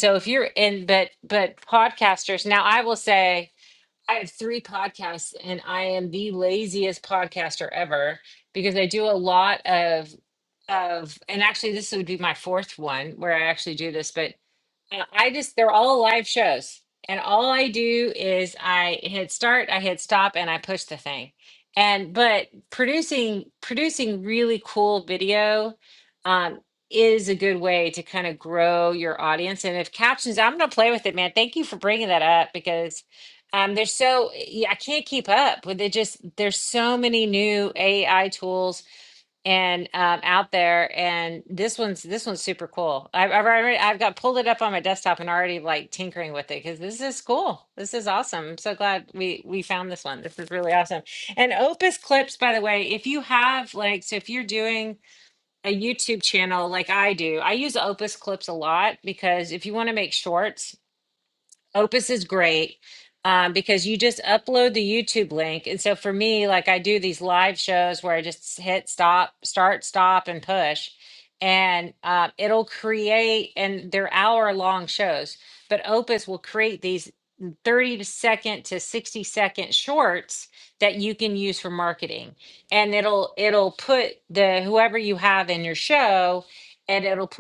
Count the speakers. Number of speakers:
1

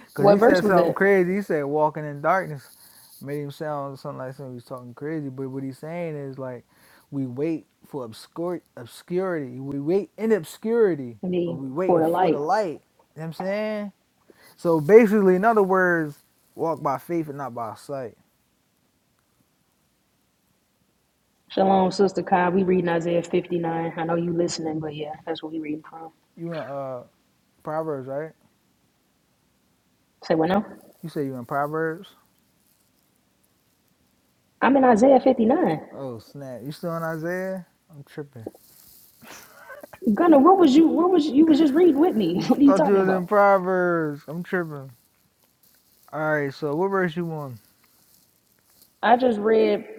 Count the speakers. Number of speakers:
2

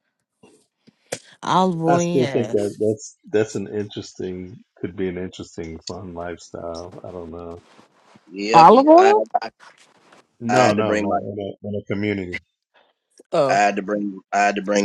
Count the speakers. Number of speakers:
3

